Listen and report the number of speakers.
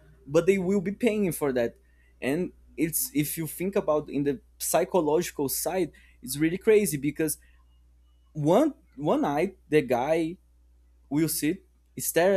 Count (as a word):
one